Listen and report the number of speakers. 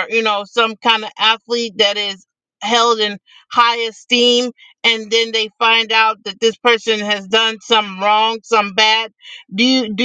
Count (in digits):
1